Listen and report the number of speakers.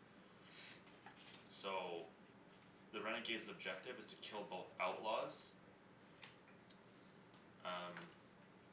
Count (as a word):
one